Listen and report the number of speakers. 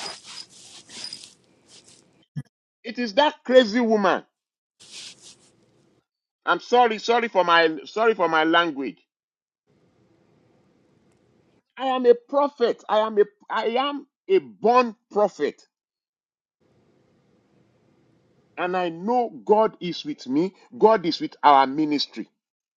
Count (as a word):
one